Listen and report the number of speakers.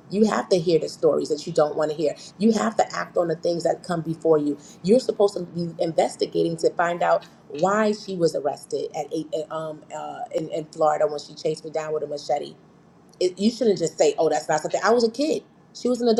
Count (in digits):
1